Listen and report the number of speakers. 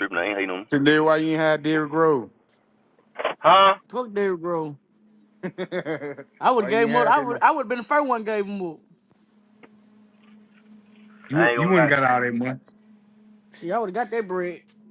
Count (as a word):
three